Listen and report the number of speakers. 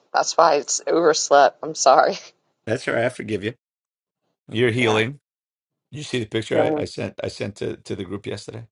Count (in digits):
2